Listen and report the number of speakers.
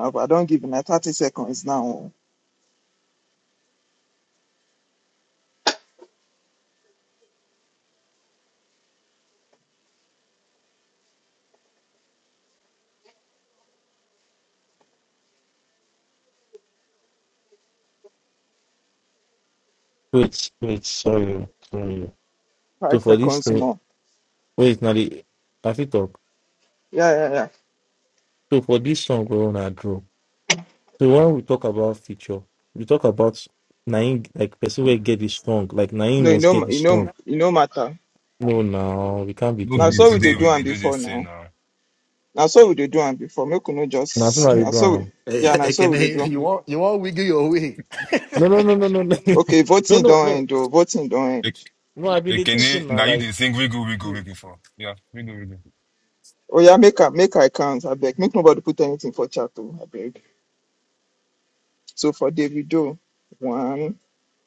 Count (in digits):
4